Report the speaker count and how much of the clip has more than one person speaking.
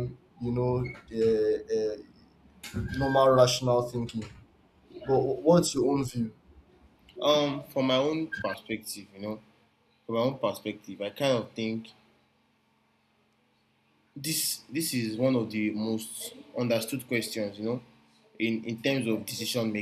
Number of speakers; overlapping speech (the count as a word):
two, no overlap